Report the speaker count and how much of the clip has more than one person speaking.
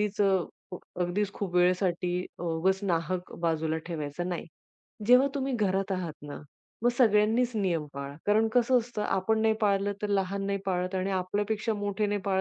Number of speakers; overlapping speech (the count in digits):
1, no overlap